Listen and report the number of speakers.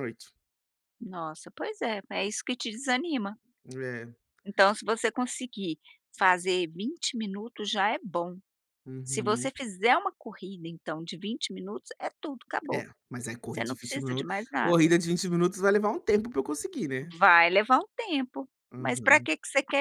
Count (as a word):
two